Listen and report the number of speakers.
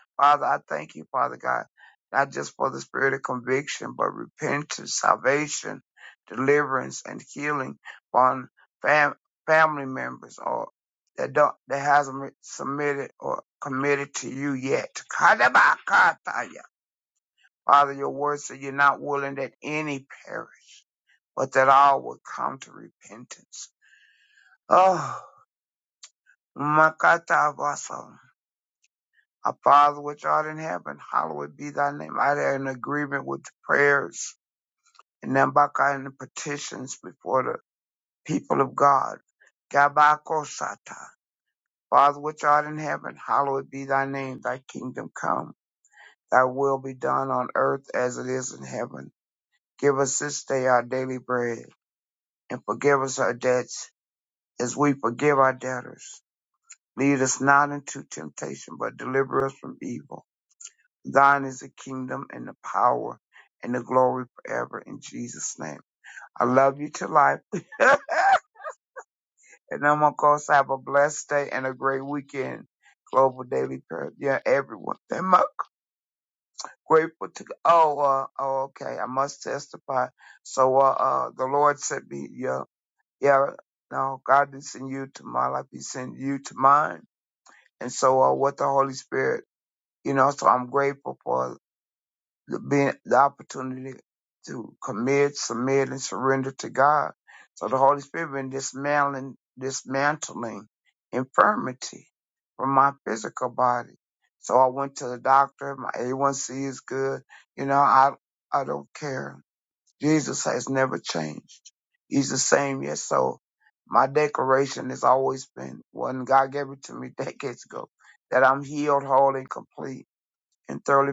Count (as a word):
one